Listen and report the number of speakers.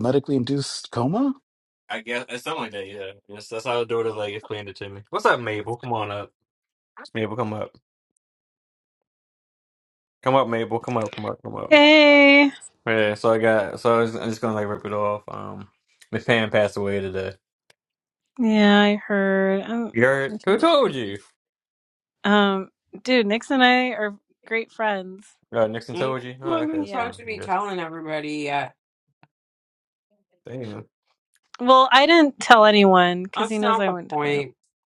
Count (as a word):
four